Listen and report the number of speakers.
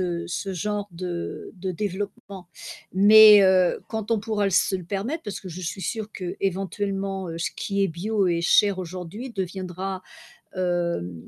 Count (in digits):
1